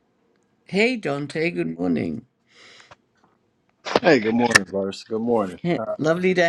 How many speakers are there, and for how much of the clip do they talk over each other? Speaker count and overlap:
two, about 6%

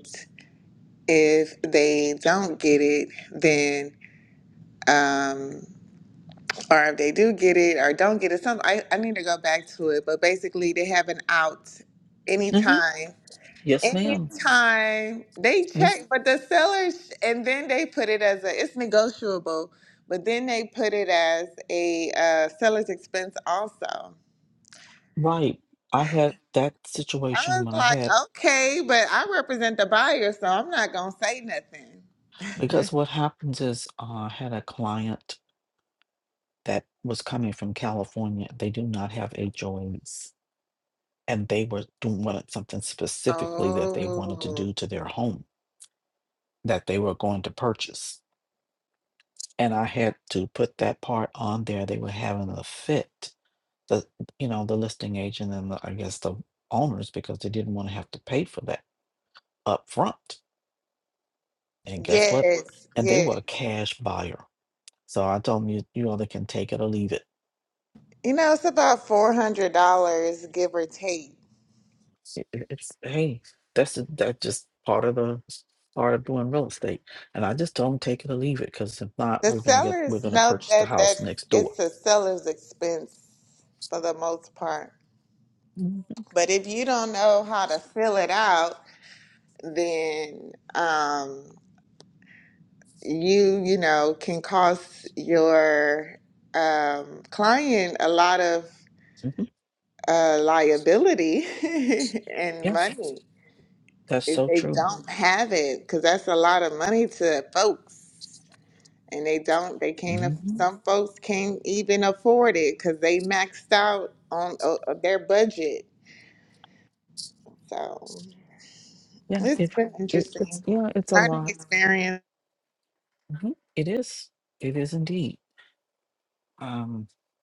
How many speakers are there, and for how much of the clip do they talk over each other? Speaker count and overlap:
two, about 7%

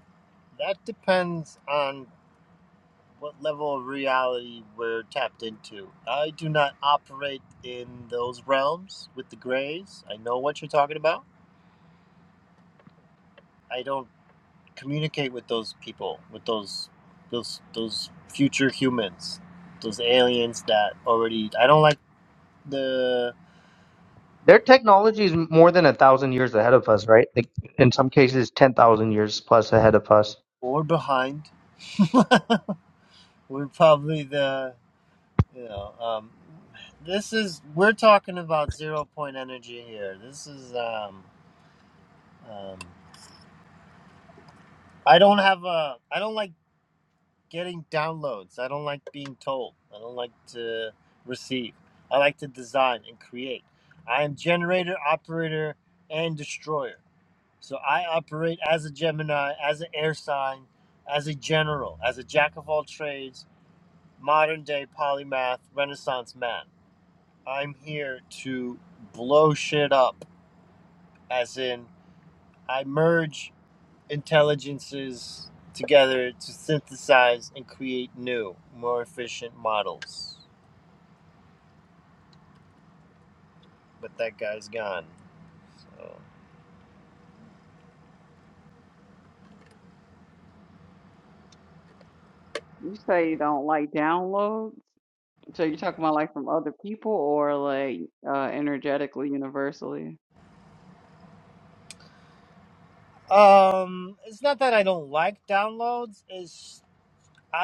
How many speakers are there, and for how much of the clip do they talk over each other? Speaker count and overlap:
three, no overlap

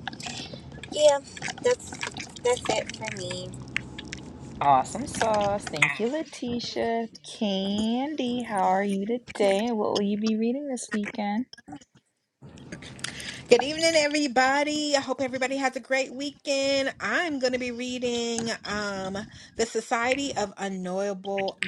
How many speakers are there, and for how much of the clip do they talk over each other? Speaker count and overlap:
three, no overlap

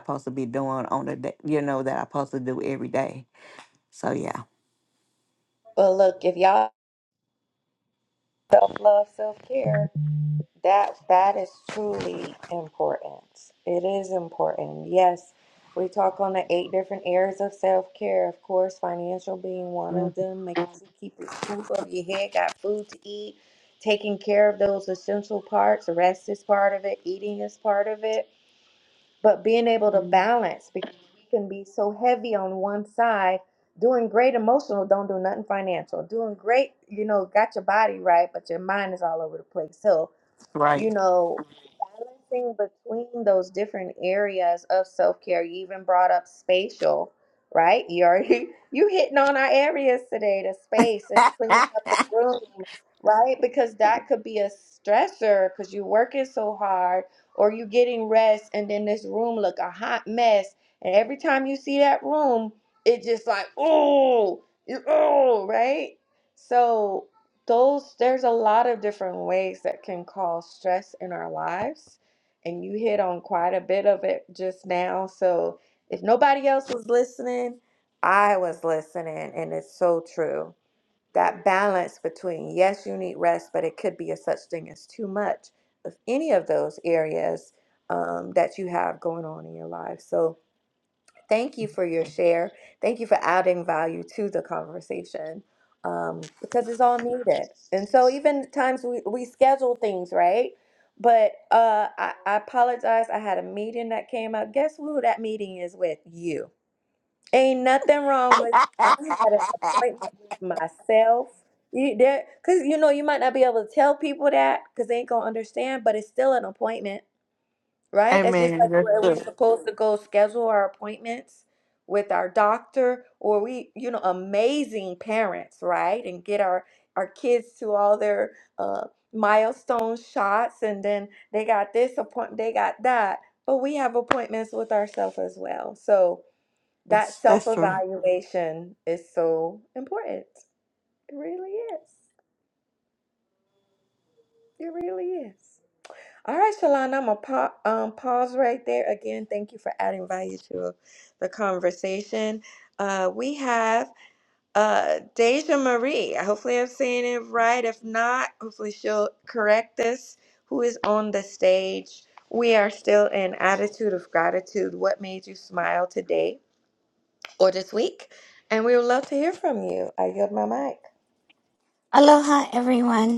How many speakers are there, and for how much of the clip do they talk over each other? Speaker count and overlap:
three, about 1%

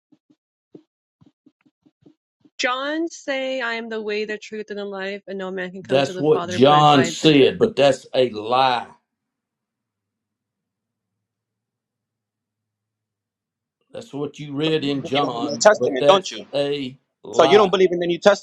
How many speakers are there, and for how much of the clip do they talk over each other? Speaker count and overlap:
three, about 17%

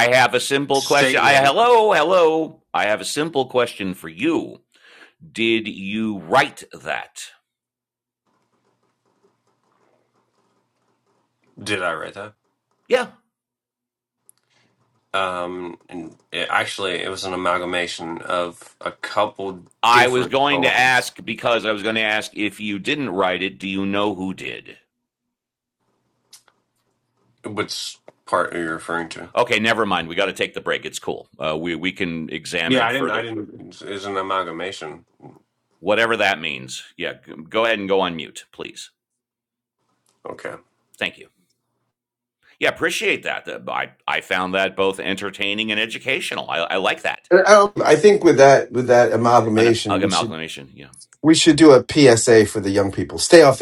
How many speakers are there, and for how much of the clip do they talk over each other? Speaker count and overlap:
three, about 6%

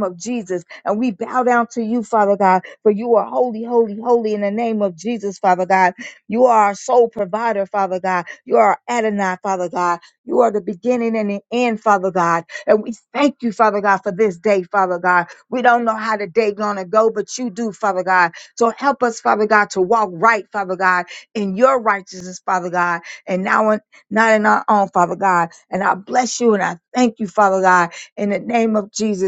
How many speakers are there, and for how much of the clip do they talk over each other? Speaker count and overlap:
one, no overlap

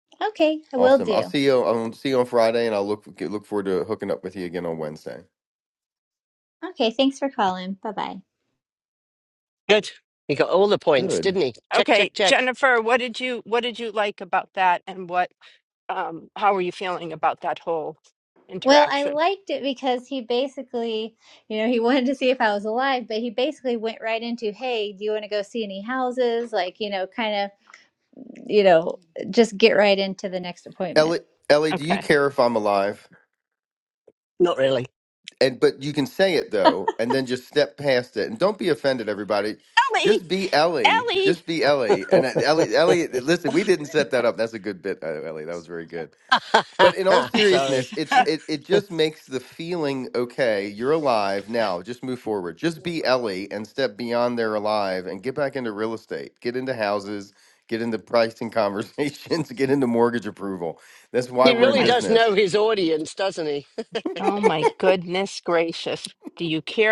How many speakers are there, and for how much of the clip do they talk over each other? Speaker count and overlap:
four, about 7%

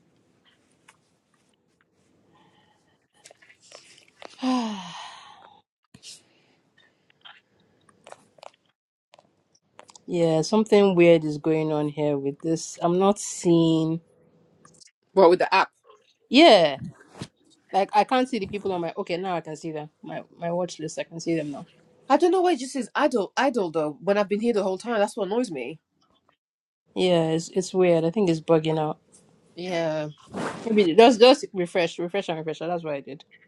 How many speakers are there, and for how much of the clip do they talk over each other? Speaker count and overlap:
two, no overlap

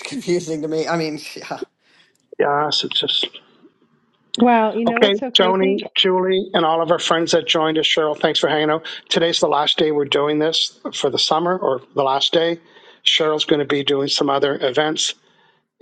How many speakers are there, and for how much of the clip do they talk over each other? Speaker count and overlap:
three, about 6%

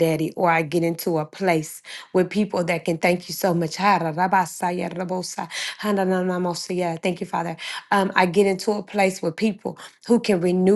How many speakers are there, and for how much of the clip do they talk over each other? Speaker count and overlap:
one, no overlap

